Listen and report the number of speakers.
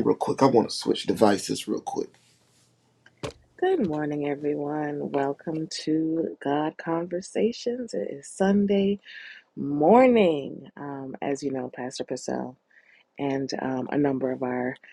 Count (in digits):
2